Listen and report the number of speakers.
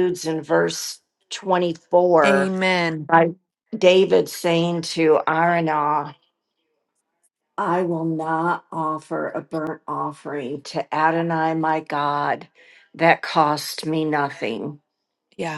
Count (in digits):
2